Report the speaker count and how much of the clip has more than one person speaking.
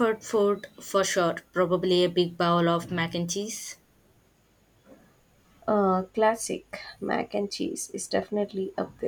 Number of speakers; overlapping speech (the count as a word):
two, no overlap